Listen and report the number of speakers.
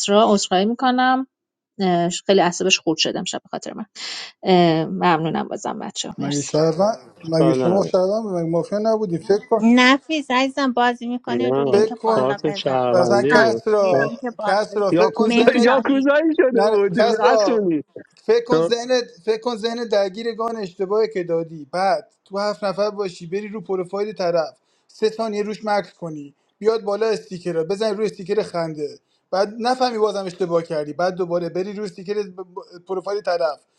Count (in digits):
4